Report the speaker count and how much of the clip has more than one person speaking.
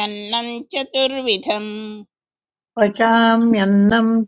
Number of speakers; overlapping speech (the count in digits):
2, no overlap